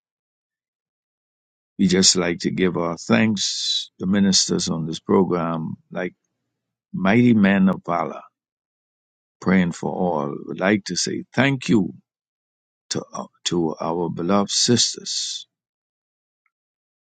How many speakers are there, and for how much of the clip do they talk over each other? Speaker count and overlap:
one, no overlap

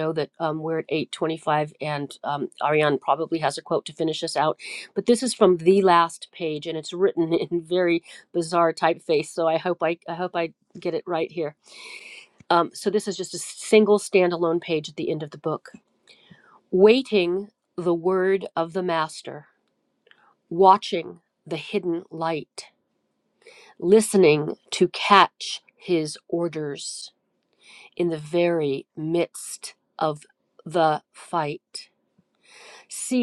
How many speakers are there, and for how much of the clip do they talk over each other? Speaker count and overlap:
one, no overlap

